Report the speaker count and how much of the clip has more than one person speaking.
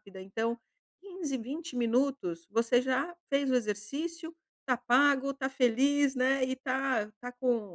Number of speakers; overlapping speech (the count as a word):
one, no overlap